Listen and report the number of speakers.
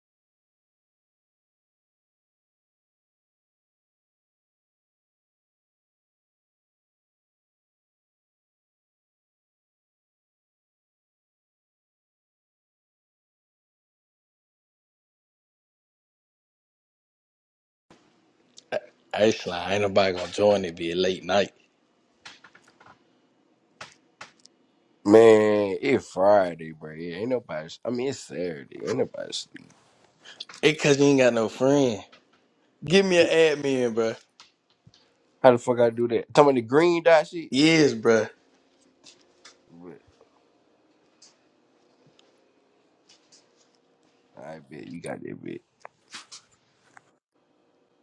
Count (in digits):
2